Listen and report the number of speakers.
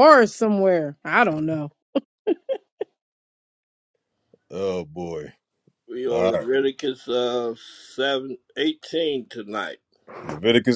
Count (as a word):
three